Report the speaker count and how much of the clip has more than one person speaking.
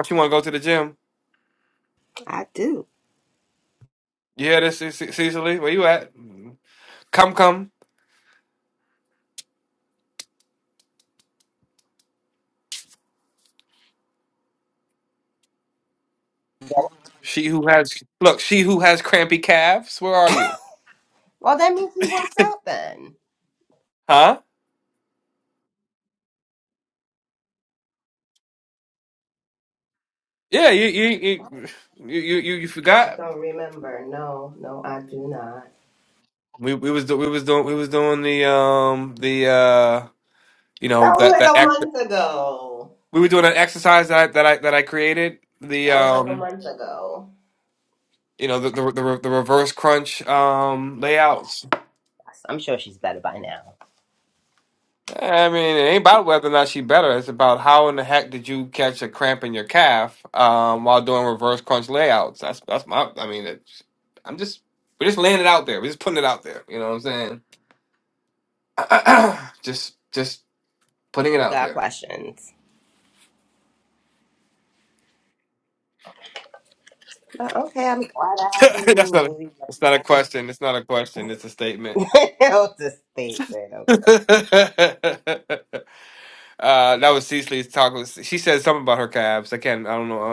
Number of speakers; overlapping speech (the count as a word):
two, about 3%